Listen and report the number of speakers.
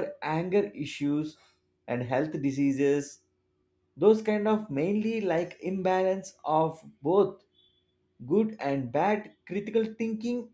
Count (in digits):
1